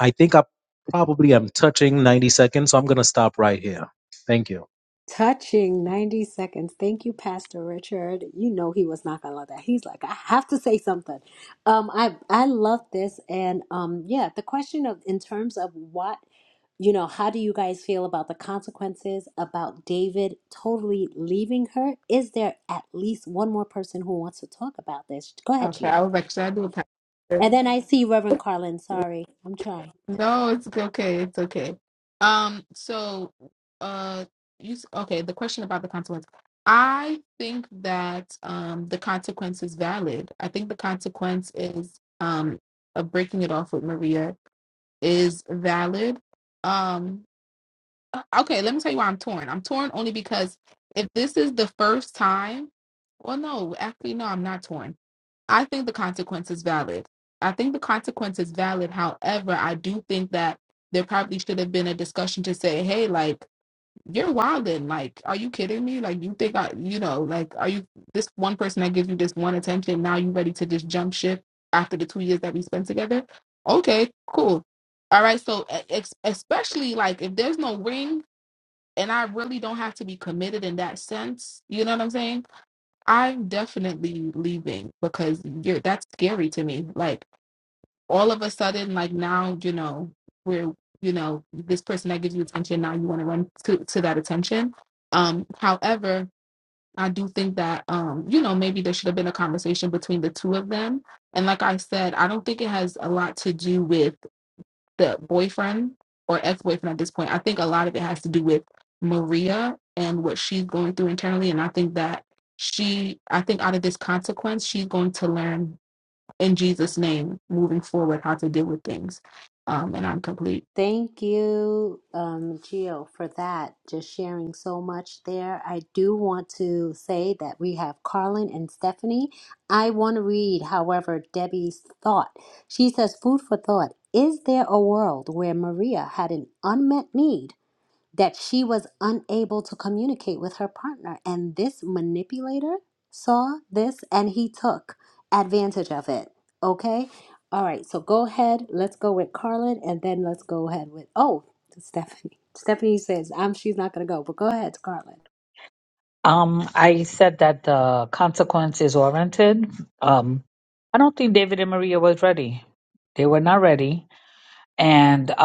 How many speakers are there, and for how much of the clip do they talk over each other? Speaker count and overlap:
four, under 1%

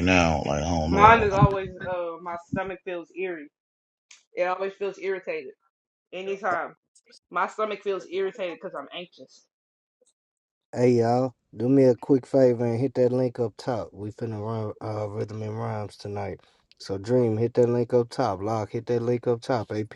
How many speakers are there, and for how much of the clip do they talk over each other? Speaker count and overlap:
three, about 3%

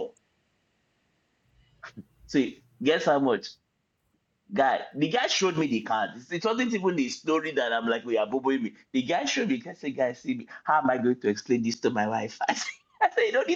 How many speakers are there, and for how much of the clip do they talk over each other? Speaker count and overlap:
one, no overlap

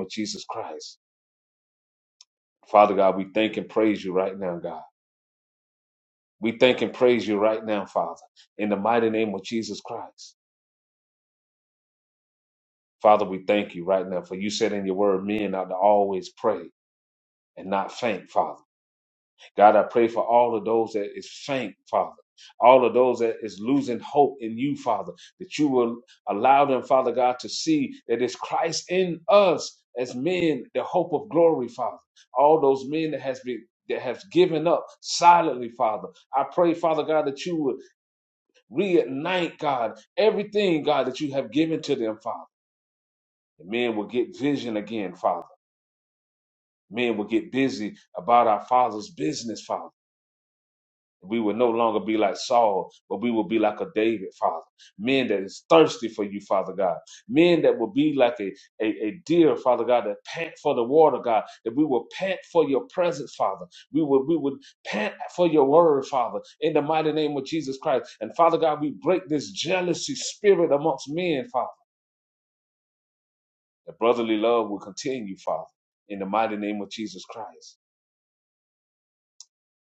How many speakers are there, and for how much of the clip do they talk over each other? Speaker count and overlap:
one, no overlap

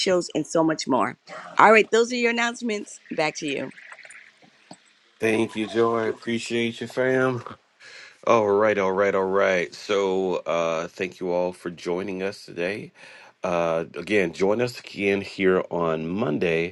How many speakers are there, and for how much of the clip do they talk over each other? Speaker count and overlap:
two, no overlap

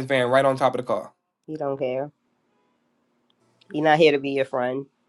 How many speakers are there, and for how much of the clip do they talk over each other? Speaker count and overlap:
two, no overlap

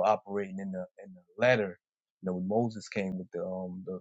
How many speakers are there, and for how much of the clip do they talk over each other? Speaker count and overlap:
one, no overlap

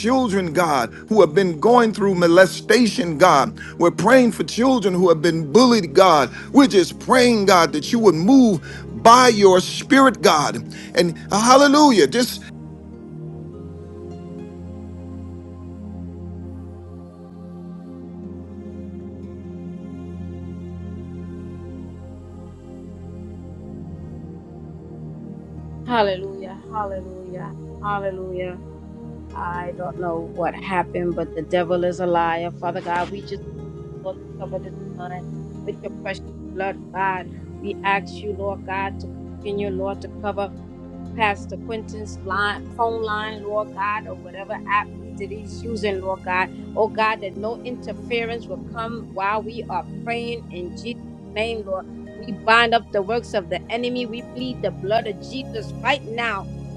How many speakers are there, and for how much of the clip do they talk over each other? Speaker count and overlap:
two, no overlap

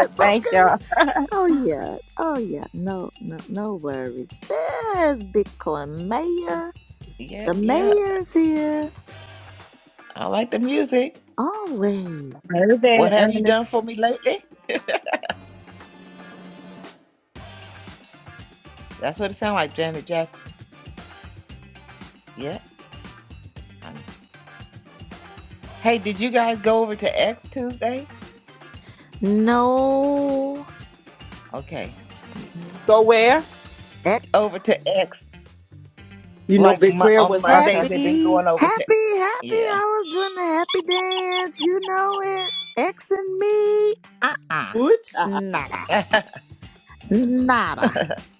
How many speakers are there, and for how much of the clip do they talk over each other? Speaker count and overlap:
four, about 10%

